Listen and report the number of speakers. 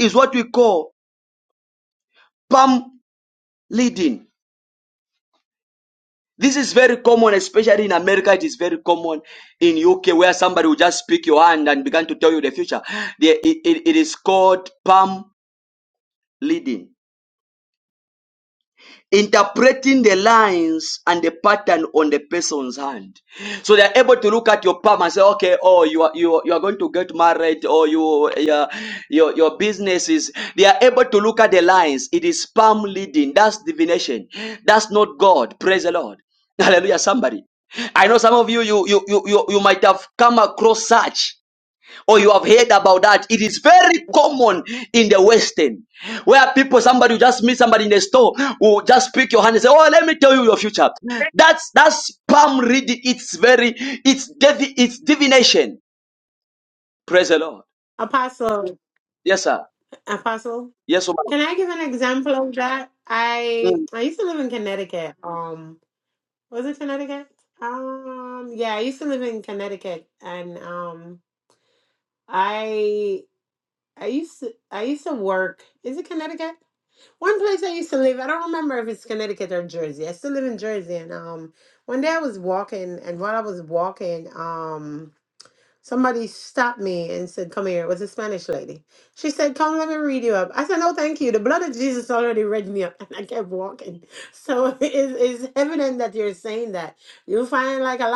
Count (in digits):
2